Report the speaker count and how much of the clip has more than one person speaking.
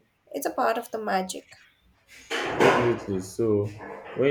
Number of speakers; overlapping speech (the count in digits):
2, no overlap